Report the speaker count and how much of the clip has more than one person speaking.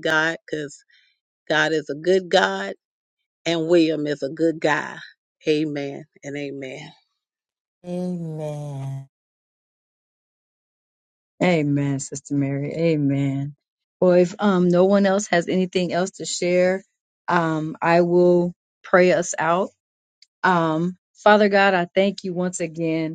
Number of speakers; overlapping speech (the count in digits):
3, no overlap